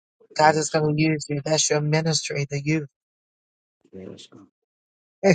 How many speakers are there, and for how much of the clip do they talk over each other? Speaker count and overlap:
2, about 11%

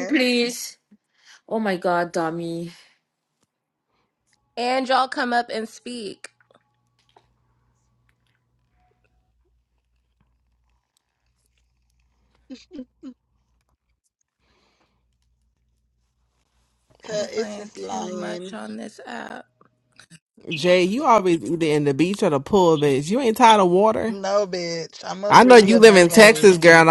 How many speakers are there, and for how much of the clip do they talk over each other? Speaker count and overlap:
4, about 11%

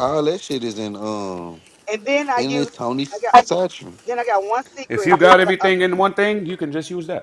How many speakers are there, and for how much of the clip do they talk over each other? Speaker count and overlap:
3, about 16%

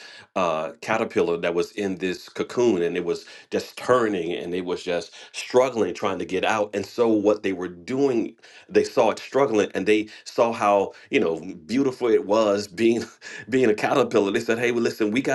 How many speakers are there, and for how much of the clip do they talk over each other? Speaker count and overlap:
1, no overlap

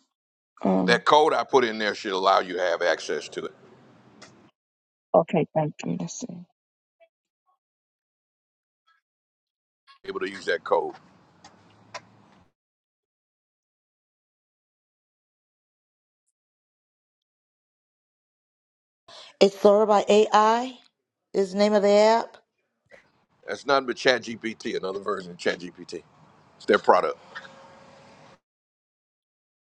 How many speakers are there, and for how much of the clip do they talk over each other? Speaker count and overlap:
3, under 1%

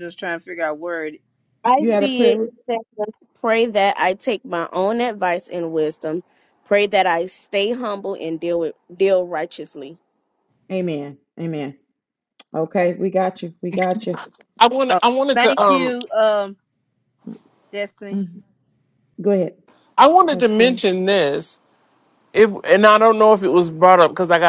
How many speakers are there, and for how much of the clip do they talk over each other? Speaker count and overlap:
4, about 8%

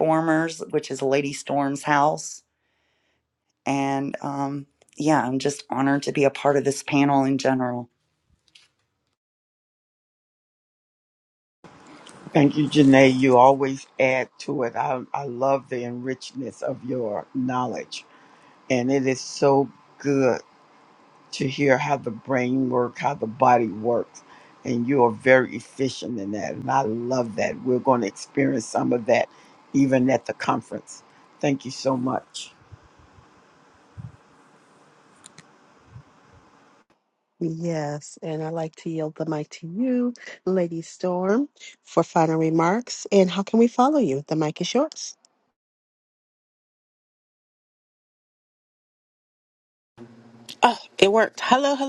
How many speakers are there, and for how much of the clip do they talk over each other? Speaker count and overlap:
4, no overlap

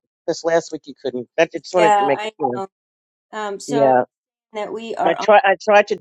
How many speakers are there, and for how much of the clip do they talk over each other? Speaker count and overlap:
2, about 22%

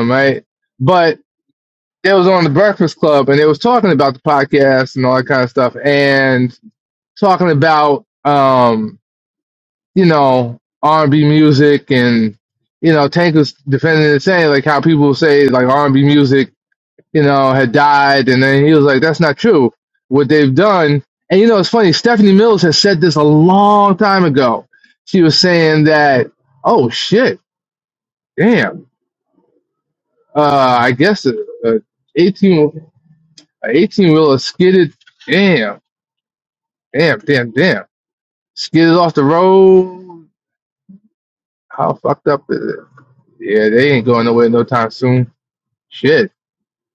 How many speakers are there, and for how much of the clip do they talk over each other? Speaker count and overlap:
1, no overlap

